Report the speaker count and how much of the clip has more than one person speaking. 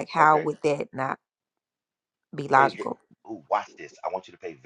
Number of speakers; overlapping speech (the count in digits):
2, about 12%